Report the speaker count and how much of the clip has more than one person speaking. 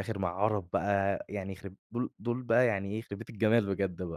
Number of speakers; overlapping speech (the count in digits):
1, no overlap